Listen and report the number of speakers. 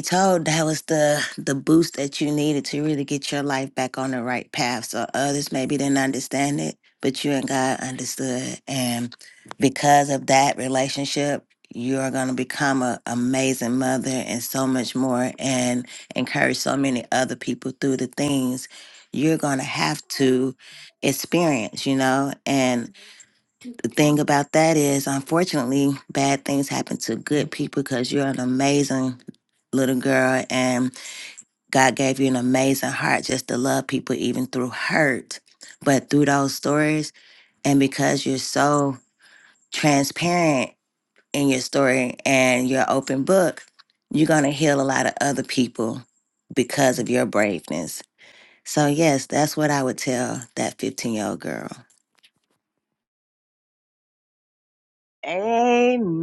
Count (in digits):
2